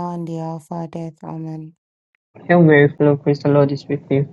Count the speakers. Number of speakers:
2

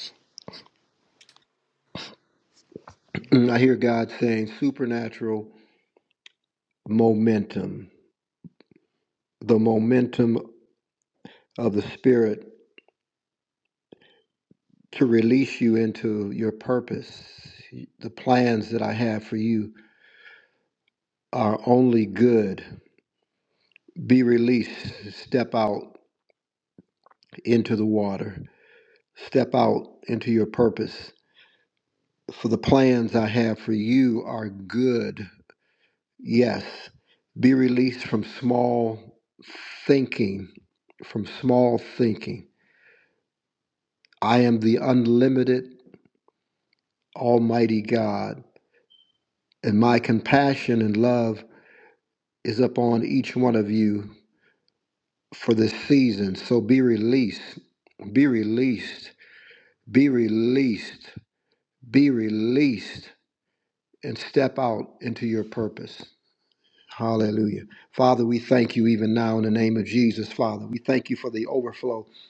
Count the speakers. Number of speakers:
1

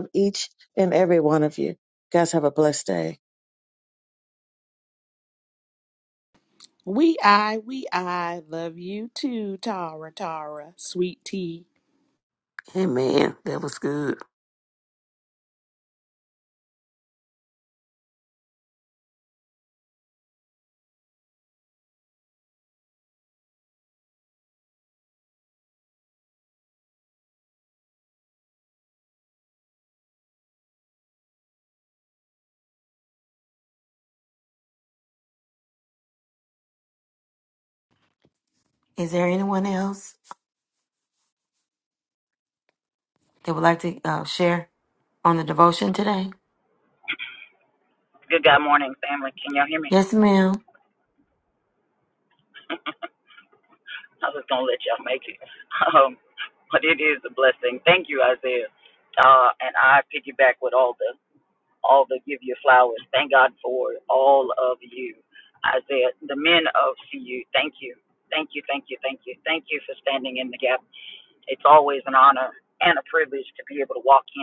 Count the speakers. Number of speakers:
5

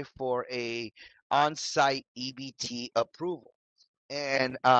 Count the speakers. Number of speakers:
1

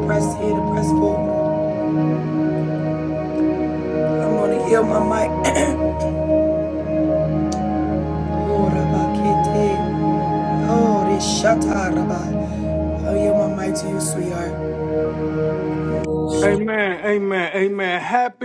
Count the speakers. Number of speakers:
2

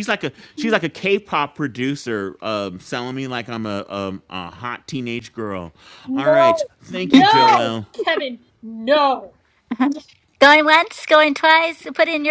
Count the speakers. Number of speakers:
3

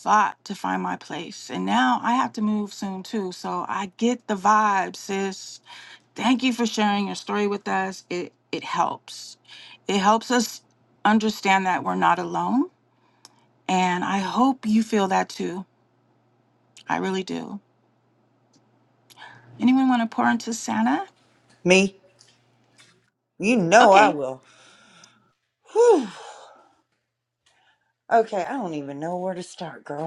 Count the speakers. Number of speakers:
2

